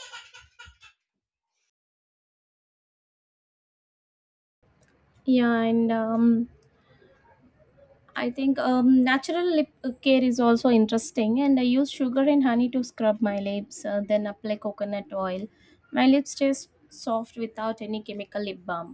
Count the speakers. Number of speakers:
one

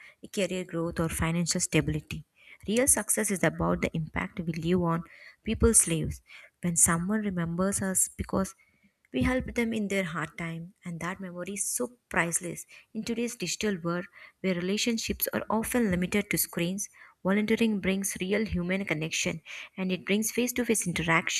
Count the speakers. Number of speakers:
one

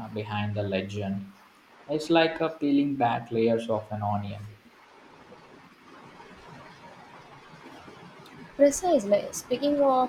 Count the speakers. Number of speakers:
two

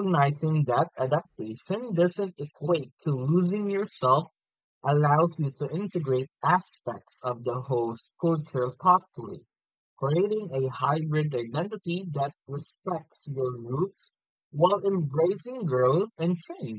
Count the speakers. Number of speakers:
one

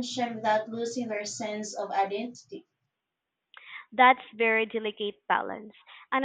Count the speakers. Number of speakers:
two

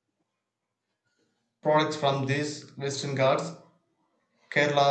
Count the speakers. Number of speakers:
one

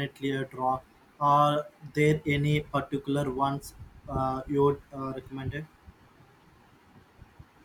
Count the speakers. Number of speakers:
one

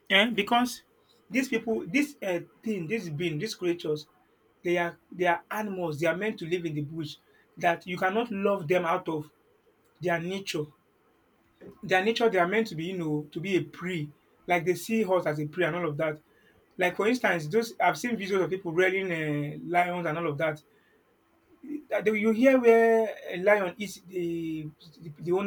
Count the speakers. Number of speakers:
one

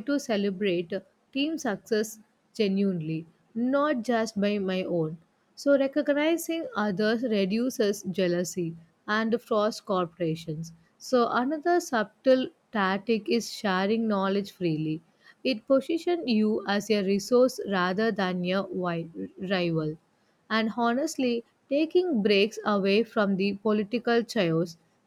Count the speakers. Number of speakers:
one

